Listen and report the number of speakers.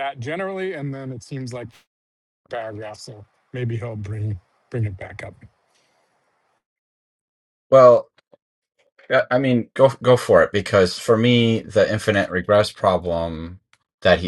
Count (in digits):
2